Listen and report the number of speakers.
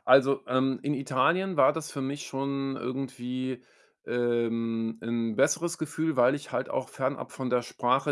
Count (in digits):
1